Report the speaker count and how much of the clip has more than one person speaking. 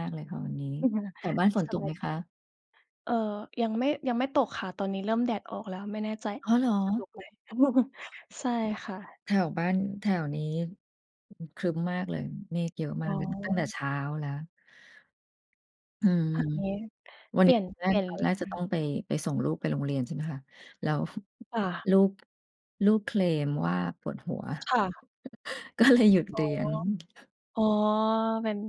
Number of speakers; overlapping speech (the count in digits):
2, about 7%